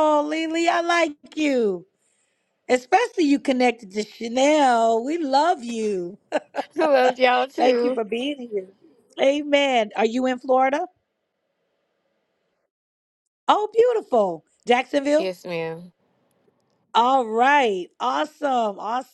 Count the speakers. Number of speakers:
two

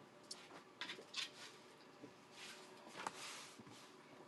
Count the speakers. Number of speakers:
zero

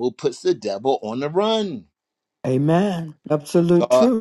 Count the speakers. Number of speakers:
two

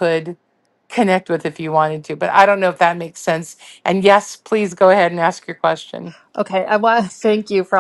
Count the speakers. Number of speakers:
two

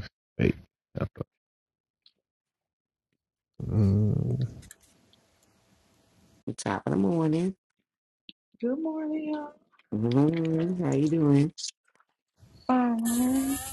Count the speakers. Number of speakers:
three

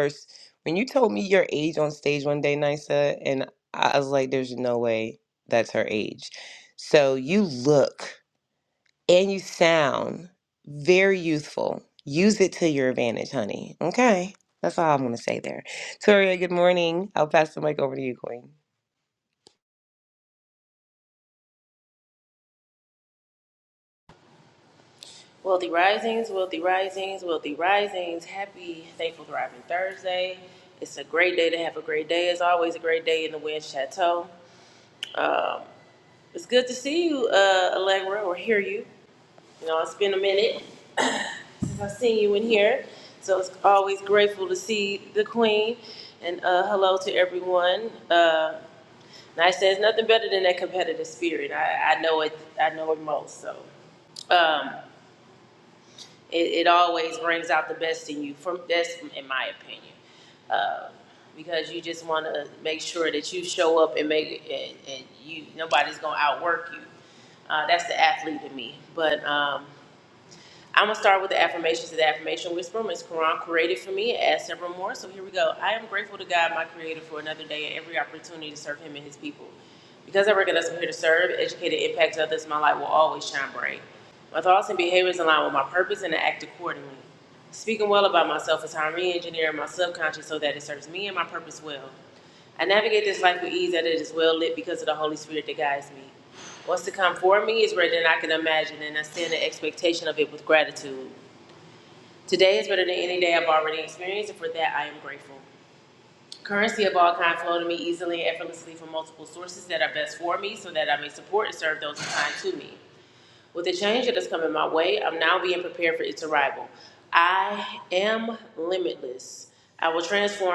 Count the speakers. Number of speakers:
two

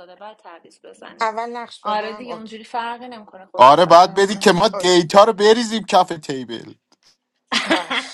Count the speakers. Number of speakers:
three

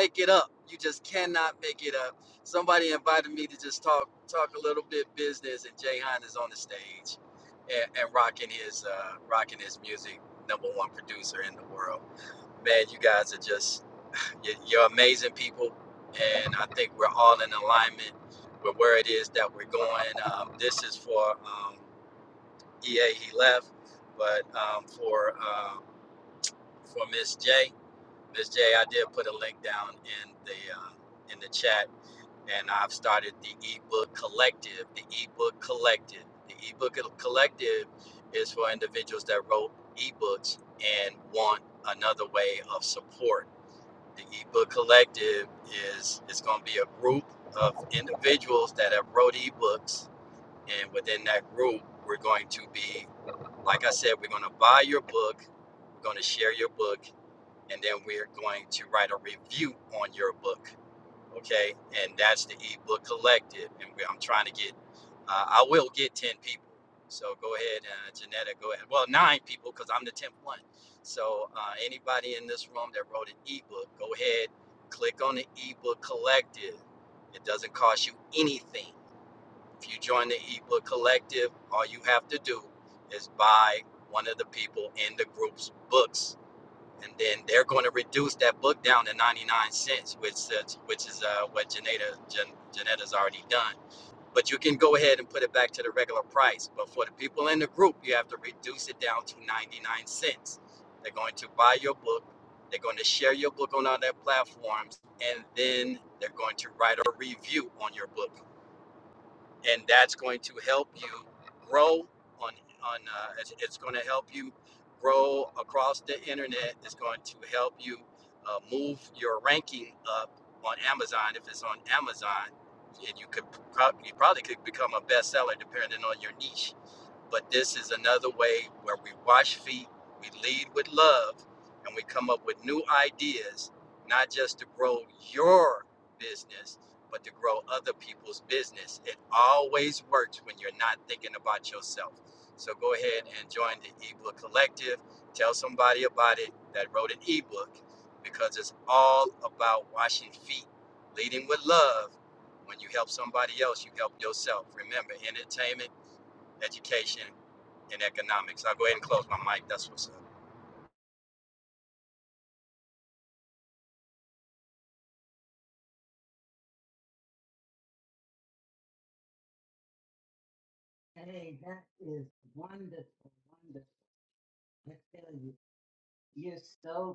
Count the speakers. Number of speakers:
two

